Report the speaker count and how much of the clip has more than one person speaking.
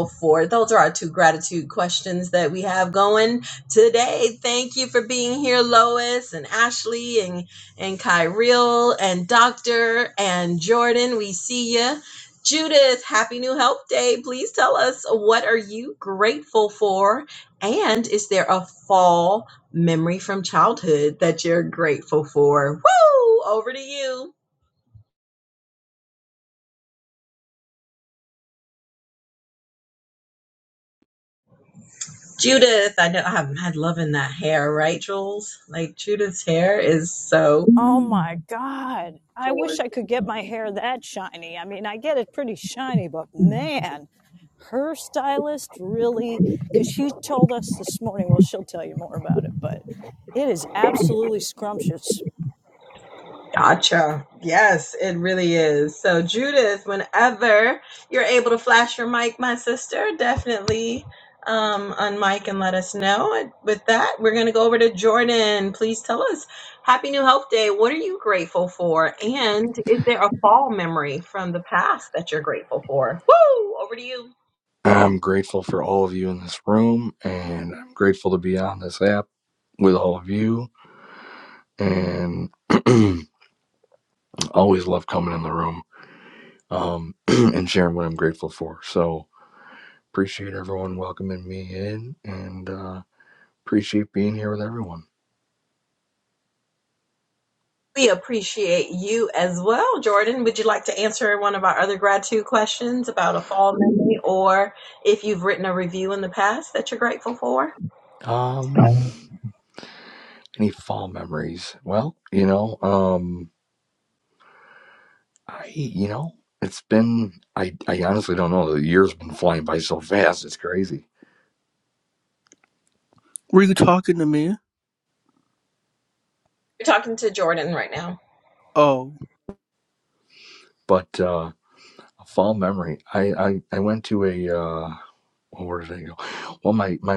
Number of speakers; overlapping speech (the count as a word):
four, no overlap